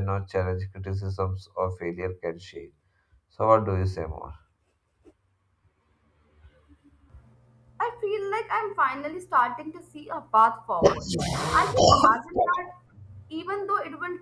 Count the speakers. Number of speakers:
2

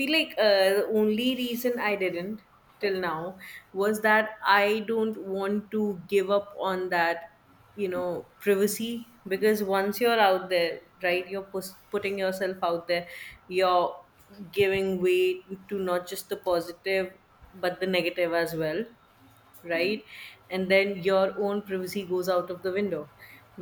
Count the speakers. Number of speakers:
1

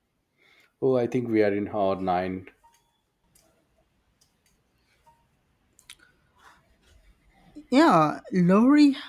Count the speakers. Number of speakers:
2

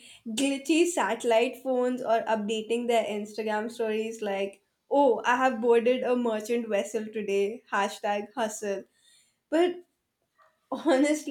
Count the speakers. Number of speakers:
1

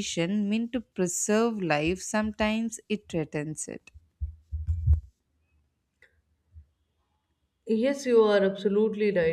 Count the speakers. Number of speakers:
2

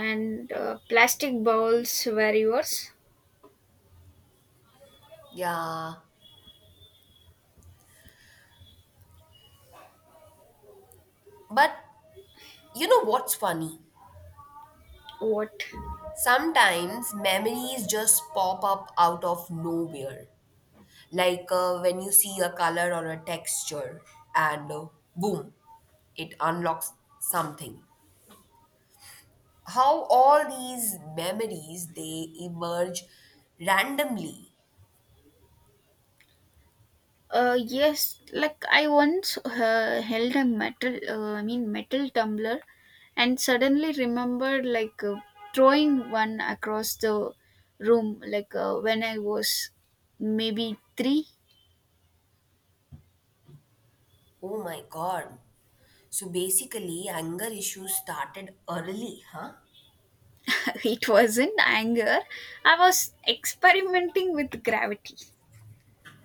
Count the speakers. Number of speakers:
2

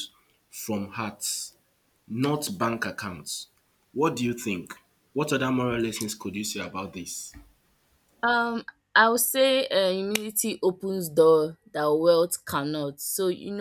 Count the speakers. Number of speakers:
2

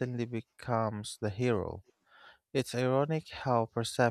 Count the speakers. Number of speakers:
1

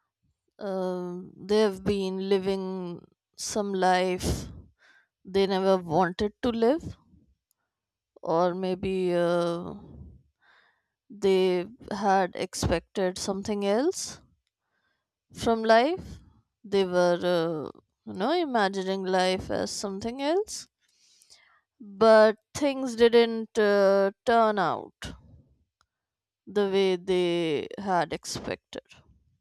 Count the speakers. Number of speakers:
1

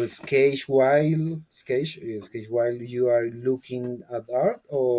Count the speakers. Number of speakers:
1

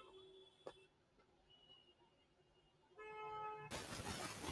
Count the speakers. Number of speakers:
0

